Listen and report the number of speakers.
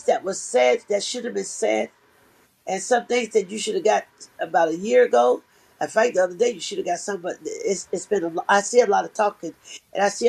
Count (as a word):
one